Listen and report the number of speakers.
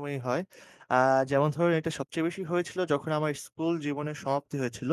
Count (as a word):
one